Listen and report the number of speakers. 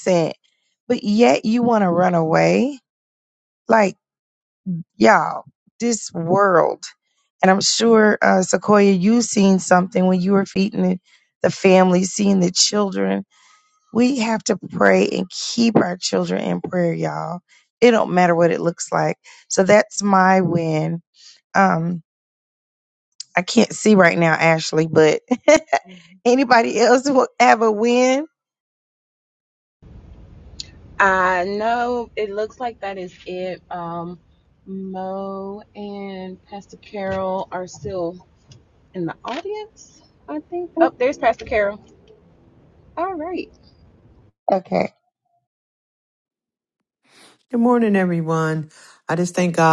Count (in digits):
3